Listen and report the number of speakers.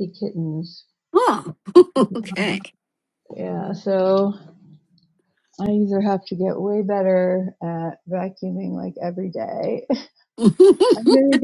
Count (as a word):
two